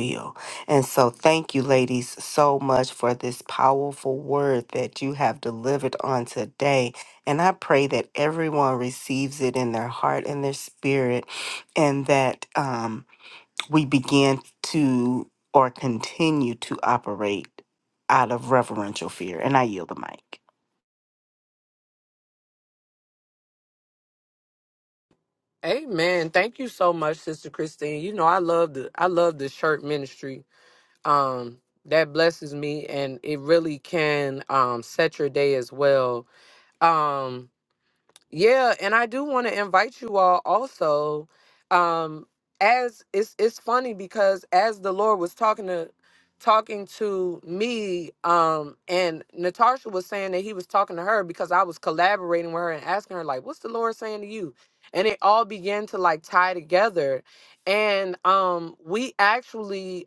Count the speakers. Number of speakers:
two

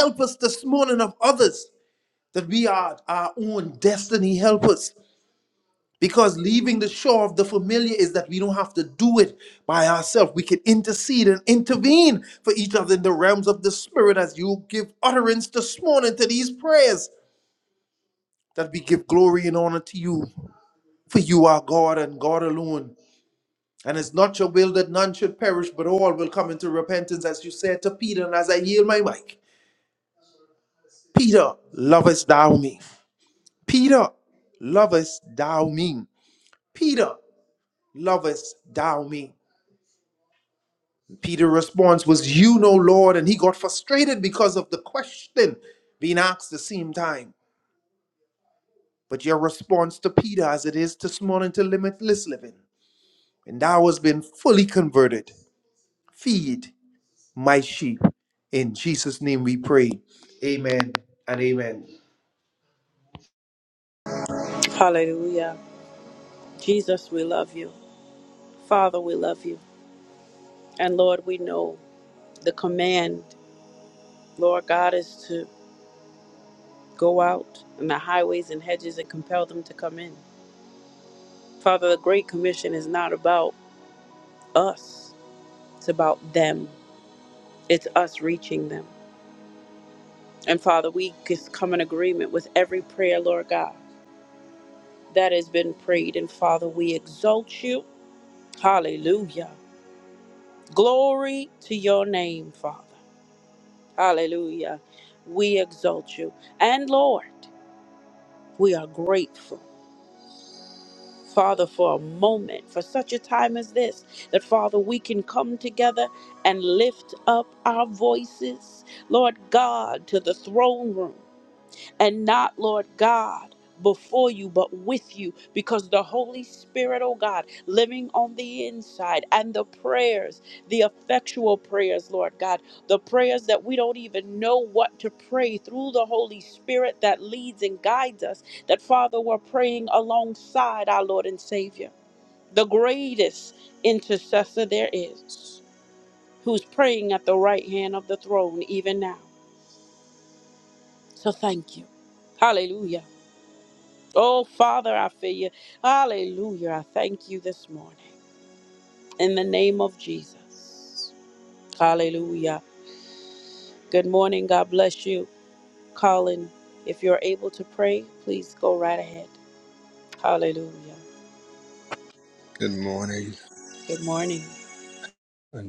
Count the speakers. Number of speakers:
three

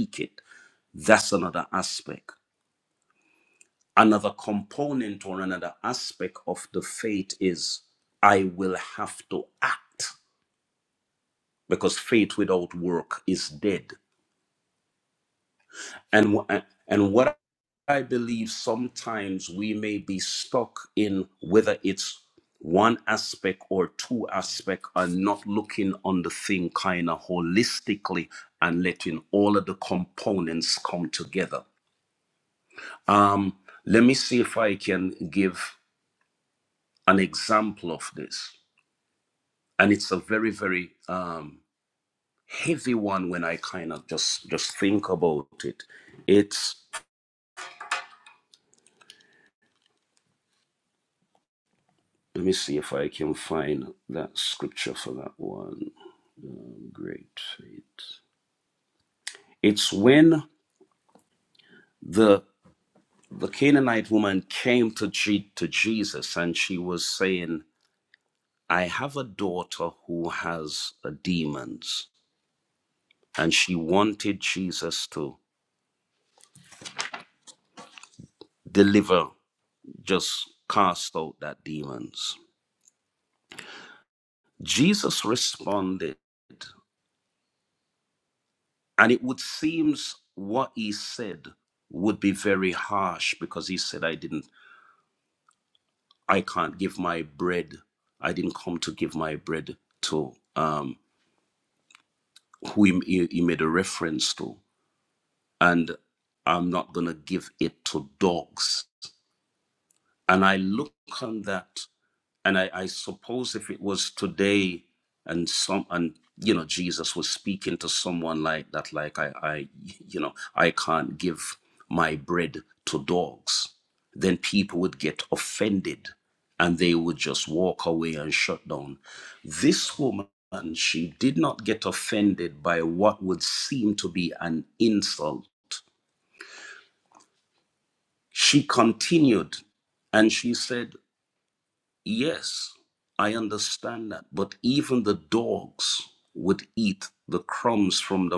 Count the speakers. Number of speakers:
one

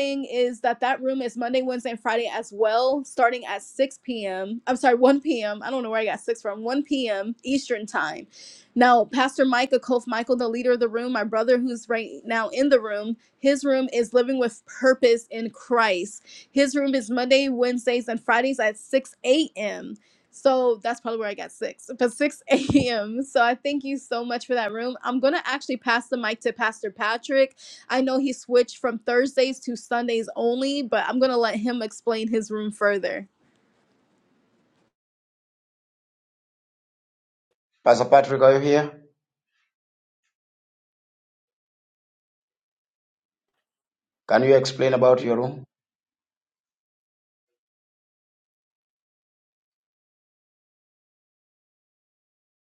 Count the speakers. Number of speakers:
two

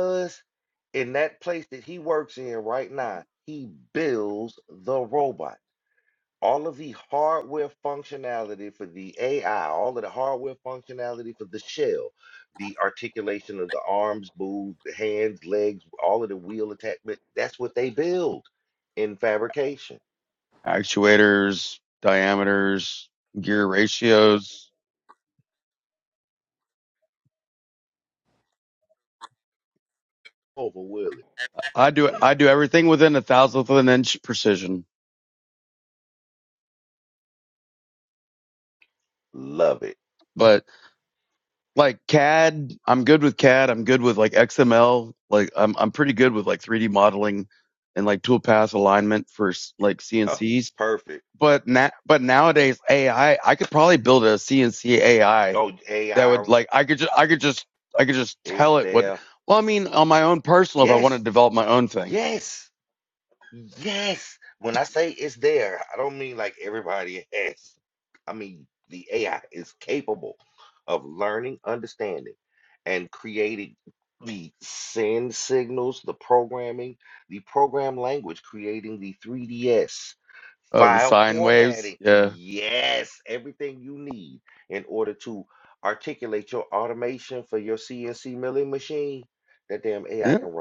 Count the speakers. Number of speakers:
two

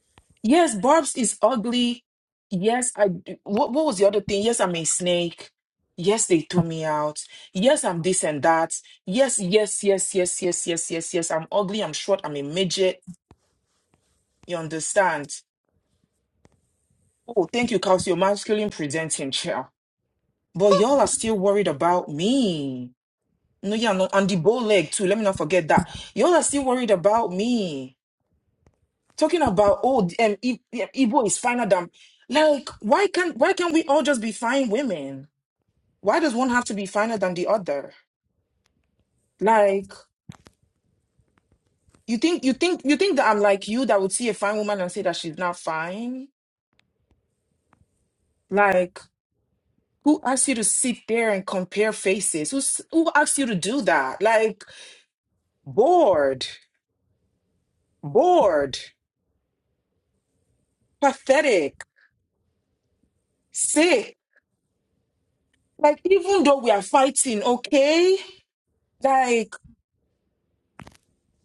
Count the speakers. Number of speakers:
one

